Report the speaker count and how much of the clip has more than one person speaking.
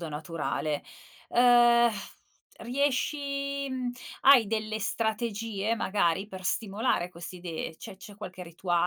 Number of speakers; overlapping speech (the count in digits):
1, no overlap